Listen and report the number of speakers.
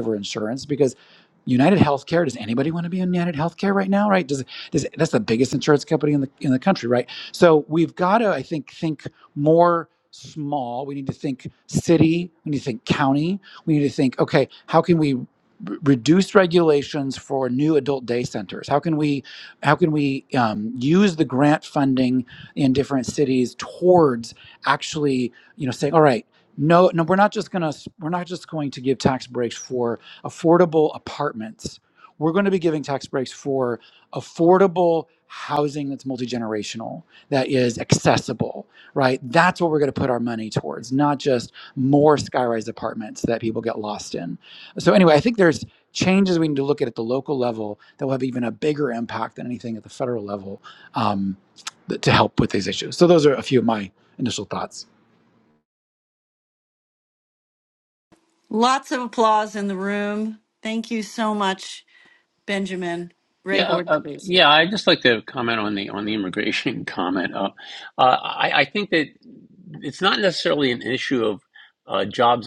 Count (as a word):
three